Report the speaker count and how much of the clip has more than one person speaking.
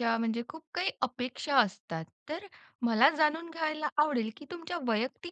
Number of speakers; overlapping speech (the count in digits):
1, no overlap